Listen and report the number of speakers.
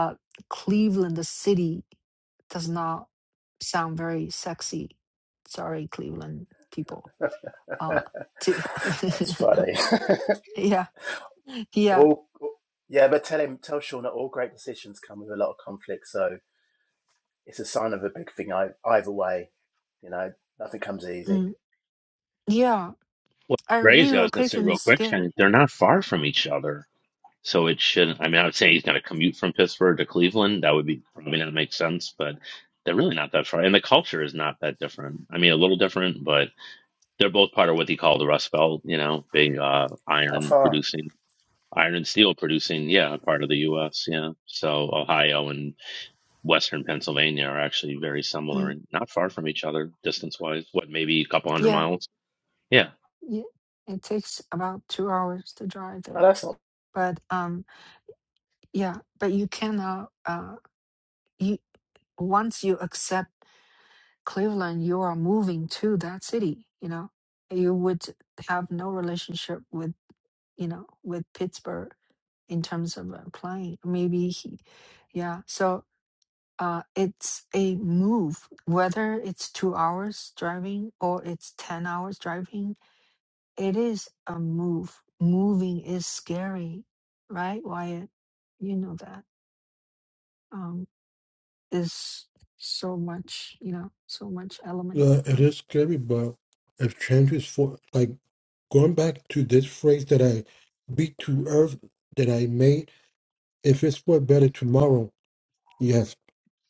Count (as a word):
four